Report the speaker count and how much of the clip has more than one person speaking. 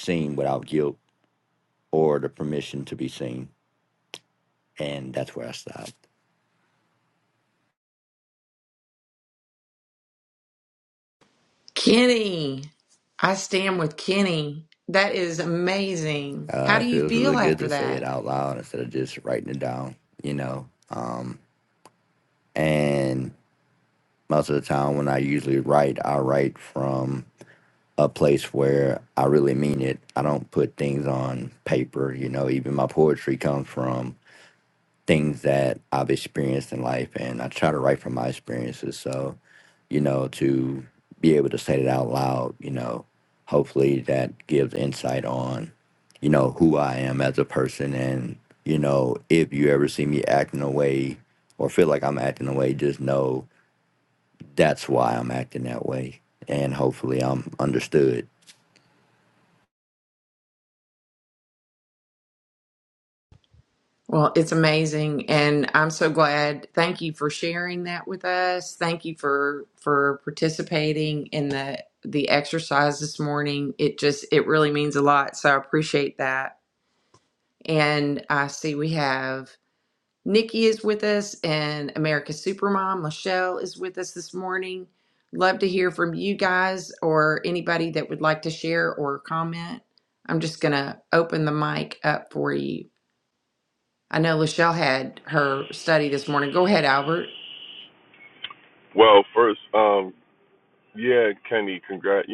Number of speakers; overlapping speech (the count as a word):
three, about 2%